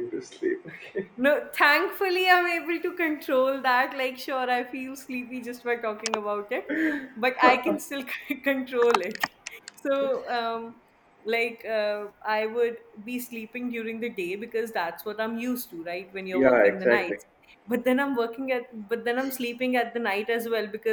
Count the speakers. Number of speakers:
2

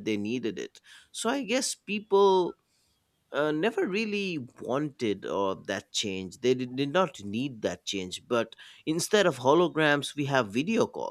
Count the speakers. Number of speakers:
1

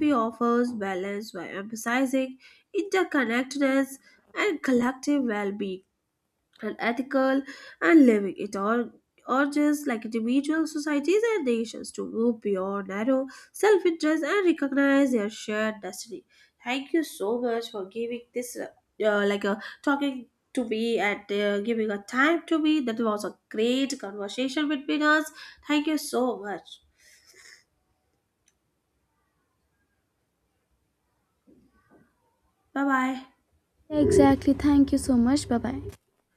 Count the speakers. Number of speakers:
2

